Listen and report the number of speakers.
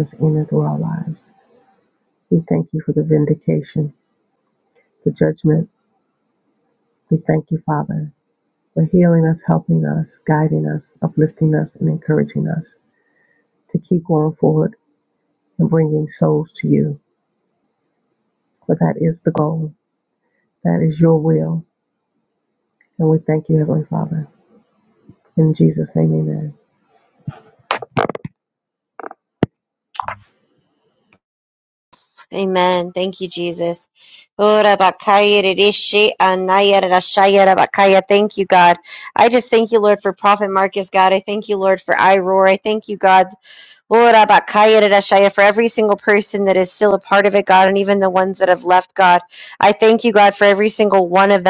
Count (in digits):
2